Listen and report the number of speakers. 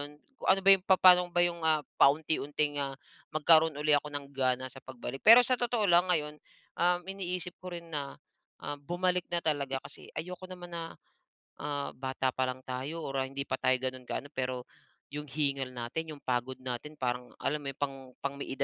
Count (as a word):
one